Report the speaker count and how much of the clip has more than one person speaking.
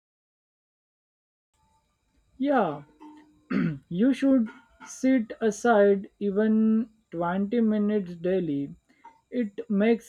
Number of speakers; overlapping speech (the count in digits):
1, no overlap